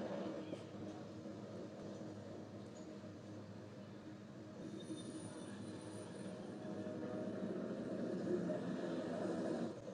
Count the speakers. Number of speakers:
0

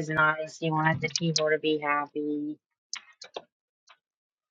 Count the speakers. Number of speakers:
1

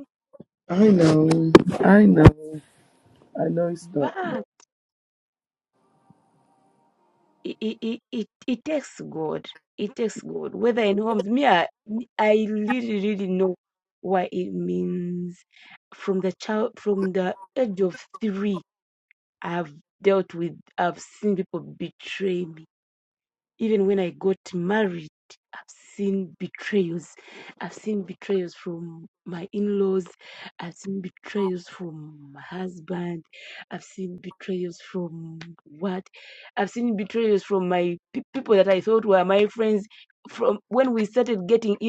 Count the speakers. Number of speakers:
2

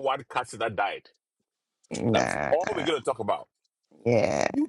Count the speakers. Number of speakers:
2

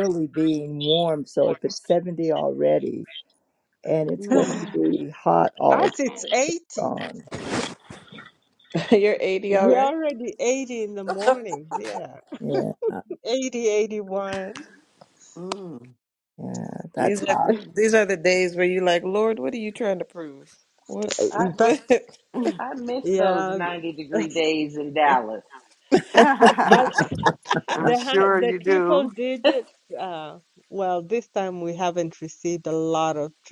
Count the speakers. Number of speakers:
5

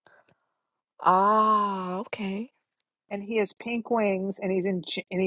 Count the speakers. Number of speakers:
2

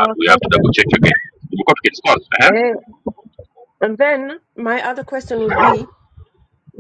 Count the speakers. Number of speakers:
2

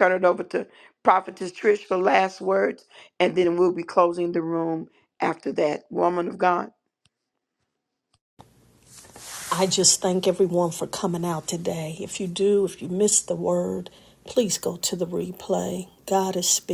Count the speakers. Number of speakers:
2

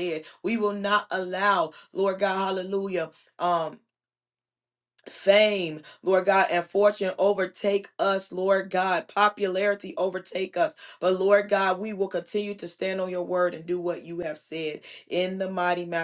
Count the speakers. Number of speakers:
1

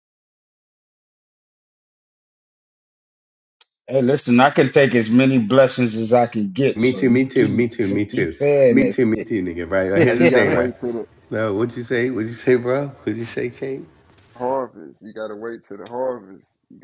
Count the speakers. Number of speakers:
3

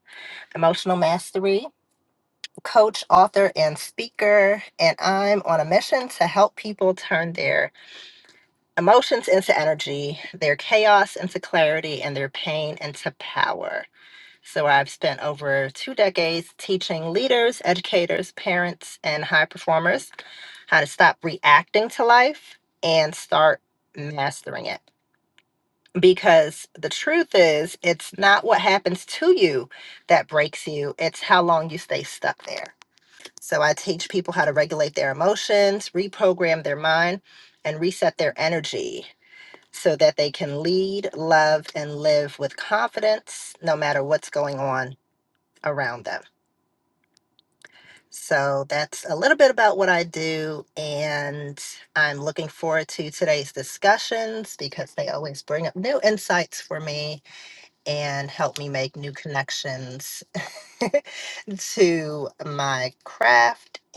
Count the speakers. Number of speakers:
1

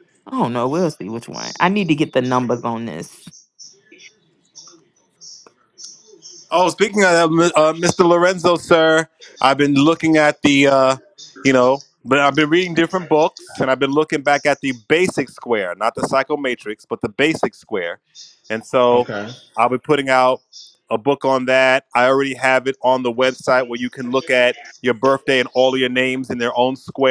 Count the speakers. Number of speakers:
2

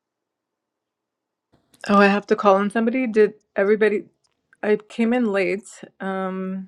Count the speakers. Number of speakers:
1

